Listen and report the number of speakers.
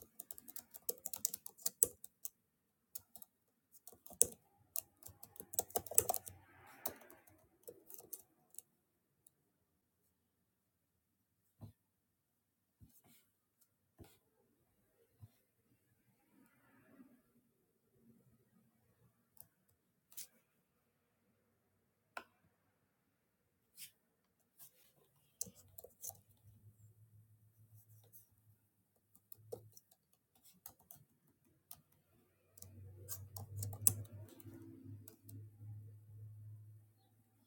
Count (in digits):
0